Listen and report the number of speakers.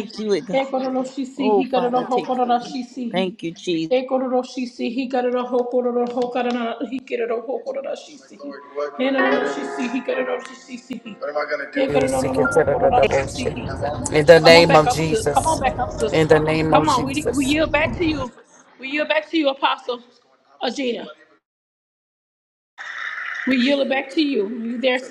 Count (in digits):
3